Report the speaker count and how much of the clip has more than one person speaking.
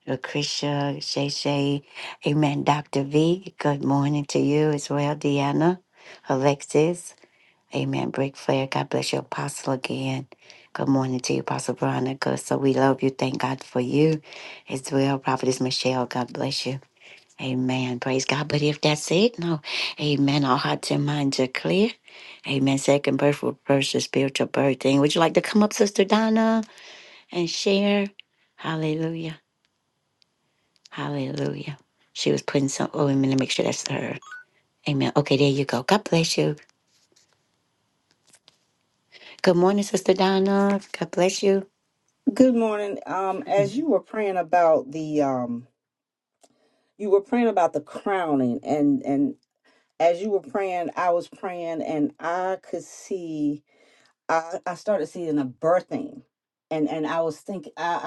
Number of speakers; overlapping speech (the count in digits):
2, no overlap